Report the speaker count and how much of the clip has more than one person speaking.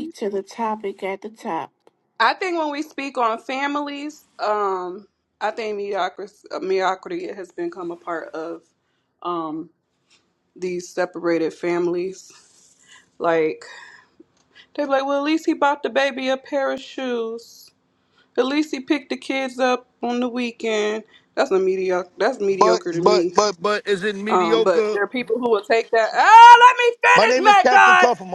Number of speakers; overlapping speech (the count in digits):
3, about 9%